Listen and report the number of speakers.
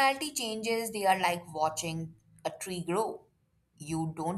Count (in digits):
1